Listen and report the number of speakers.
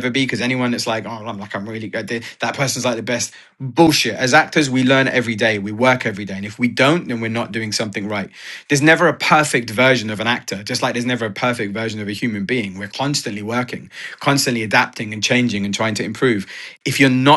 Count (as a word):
one